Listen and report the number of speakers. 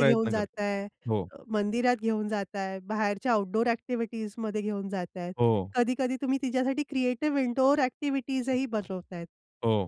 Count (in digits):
2